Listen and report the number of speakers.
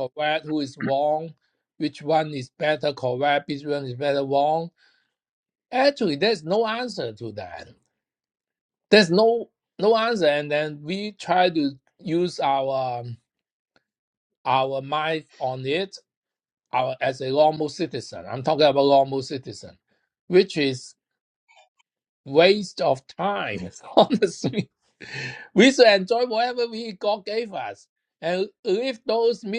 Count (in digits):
1